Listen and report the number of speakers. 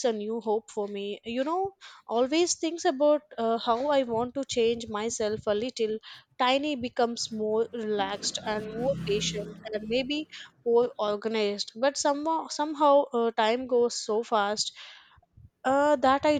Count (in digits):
1